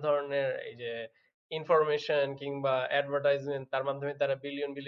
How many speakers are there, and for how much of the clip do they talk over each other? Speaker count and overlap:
one, no overlap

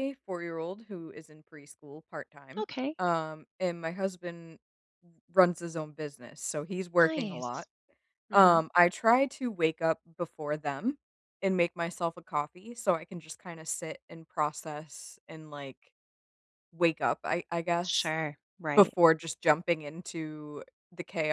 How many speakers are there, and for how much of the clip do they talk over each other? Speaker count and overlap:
two, about 4%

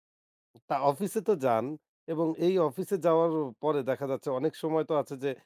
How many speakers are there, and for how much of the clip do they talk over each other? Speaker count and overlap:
one, no overlap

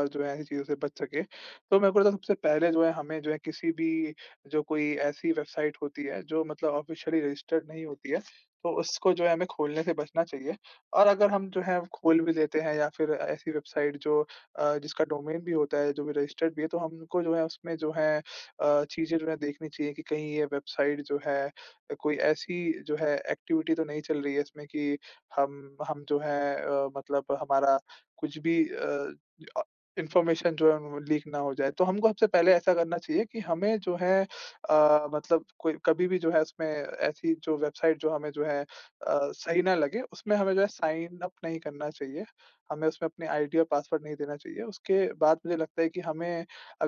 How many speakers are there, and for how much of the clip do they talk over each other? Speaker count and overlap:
one, no overlap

